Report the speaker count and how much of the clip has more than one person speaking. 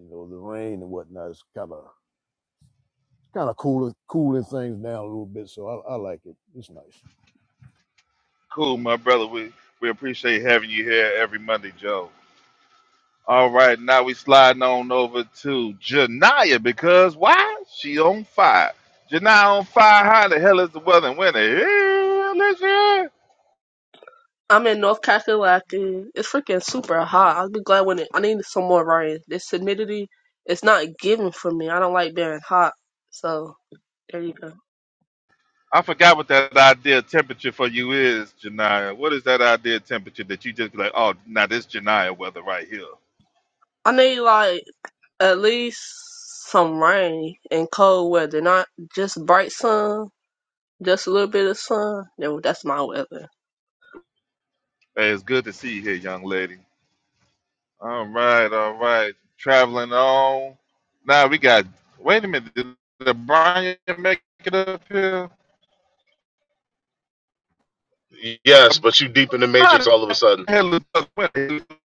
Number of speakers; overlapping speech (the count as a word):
four, under 1%